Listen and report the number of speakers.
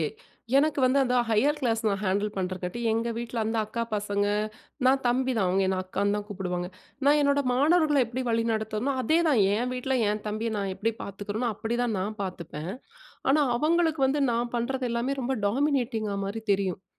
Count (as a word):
one